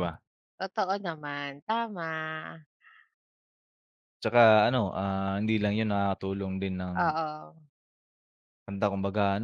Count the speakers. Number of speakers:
2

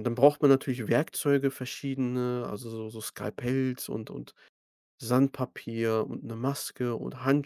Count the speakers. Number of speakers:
1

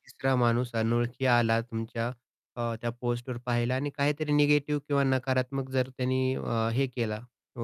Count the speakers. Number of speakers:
1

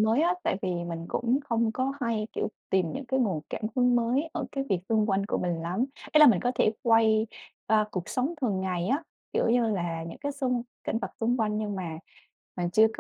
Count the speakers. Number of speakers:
1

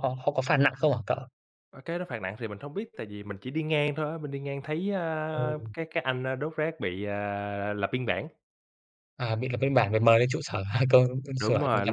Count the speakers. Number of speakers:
2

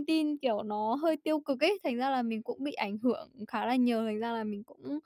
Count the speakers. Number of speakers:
1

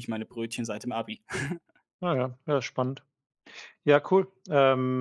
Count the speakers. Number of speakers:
2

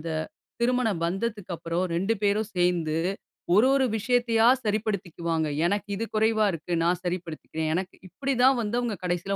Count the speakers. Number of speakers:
1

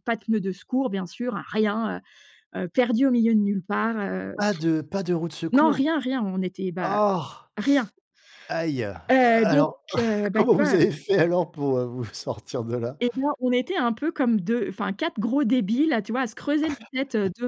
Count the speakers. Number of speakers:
2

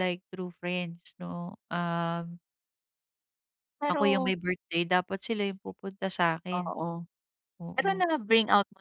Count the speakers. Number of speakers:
2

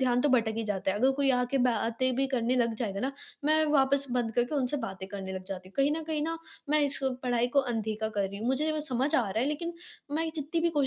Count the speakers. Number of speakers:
1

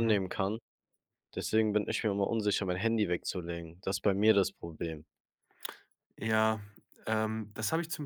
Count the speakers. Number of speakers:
2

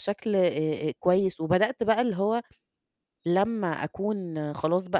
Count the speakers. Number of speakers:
1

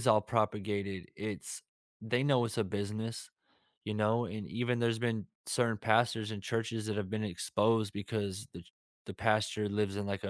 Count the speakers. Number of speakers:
1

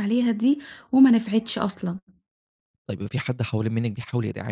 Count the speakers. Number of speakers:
2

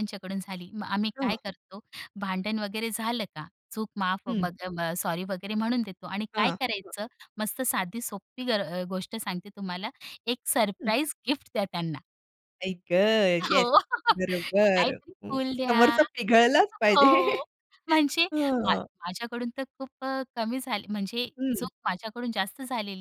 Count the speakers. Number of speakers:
2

